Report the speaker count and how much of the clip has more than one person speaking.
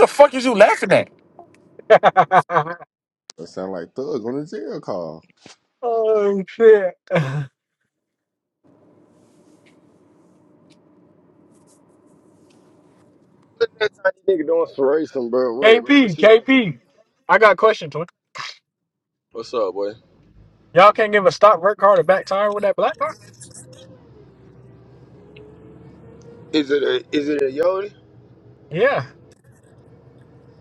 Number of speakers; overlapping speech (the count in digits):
4, about 3%